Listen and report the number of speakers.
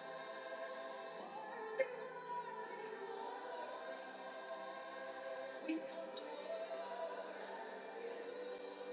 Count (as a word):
zero